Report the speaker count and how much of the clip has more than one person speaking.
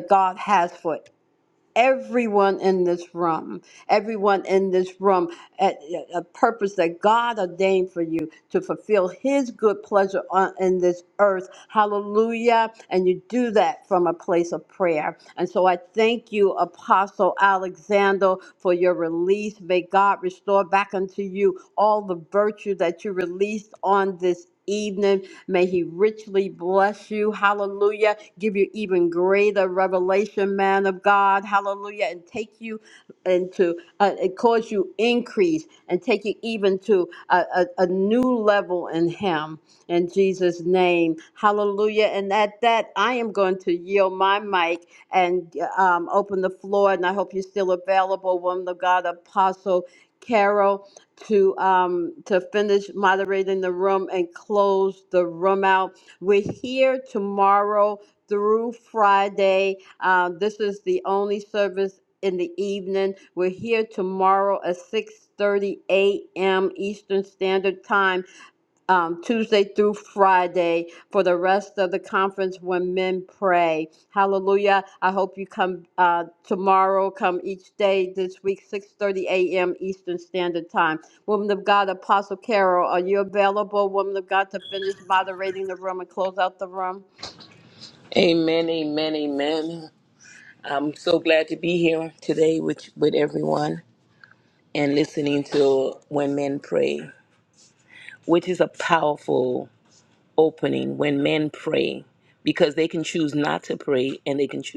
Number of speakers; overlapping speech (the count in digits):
2, no overlap